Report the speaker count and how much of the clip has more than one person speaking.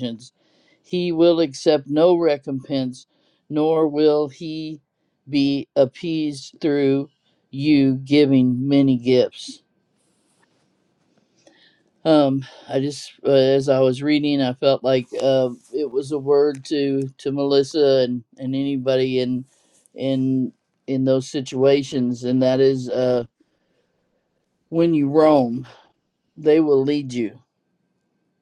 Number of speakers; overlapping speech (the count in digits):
1, no overlap